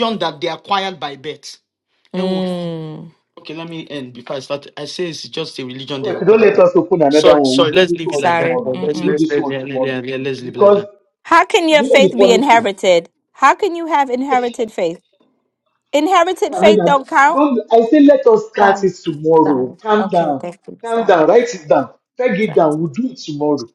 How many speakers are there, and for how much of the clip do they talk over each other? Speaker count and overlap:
3, about 28%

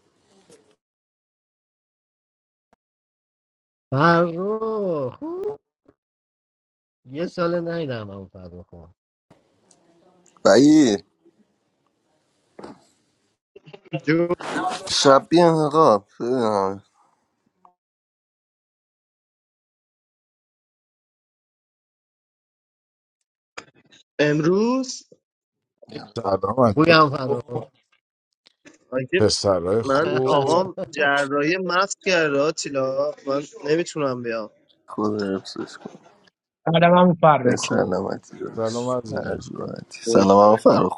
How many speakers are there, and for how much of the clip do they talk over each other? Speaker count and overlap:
5, about 5%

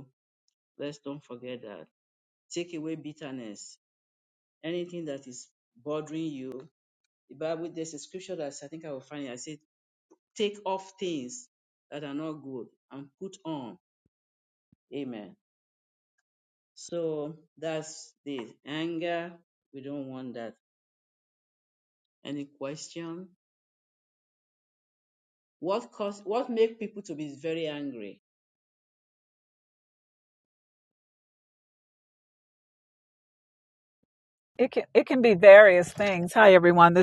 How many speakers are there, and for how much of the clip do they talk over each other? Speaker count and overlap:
2, no overlap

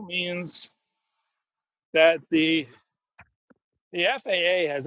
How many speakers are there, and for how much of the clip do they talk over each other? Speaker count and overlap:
1, no overlap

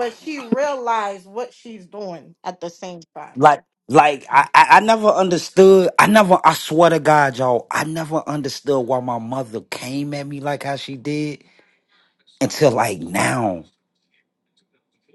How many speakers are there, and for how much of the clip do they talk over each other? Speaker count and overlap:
2, no overlap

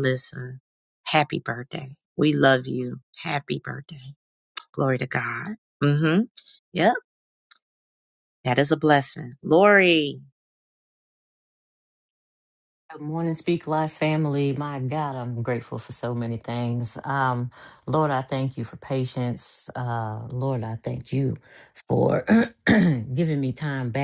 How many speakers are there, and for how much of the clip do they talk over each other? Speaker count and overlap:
2, no overlap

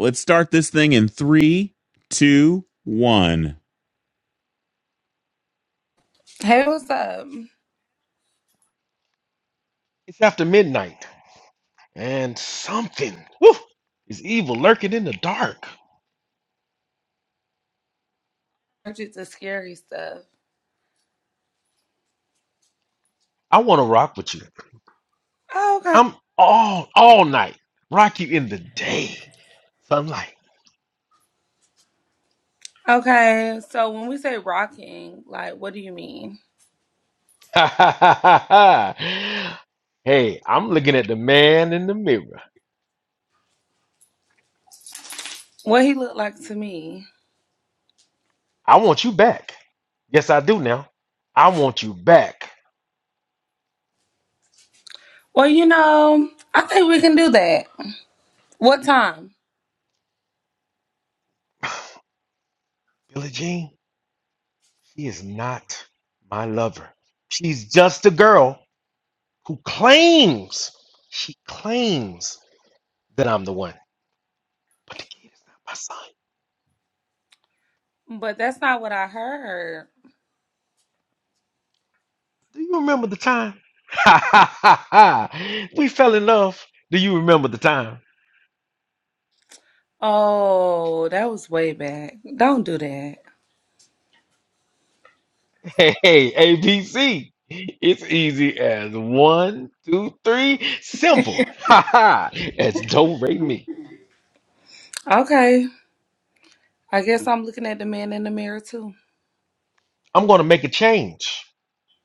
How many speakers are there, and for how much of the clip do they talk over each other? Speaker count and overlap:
3, under 1%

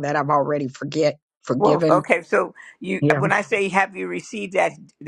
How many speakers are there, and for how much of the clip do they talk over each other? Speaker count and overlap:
2, about 13%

